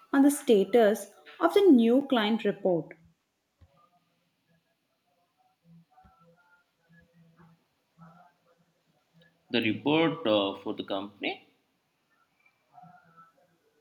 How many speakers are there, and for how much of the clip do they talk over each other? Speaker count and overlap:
2, no overlap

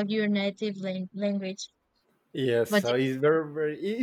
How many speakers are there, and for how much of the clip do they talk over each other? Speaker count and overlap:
2, about 5%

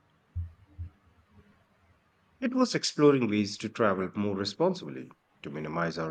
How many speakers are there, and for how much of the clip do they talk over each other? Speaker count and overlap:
1, no overlap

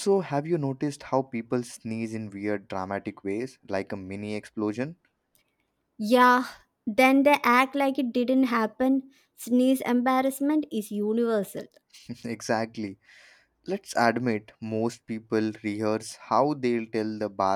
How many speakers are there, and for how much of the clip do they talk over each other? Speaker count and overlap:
2, no overlap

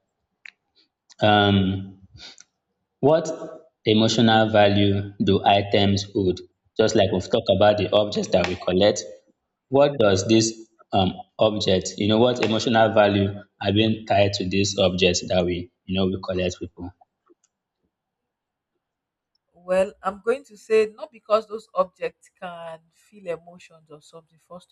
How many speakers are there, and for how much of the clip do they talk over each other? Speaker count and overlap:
2, no overlap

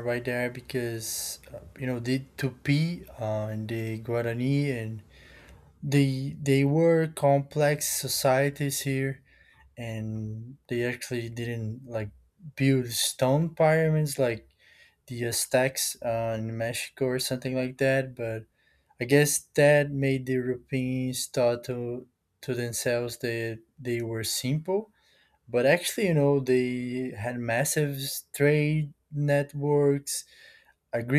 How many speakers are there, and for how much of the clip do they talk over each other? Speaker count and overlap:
1, no overlap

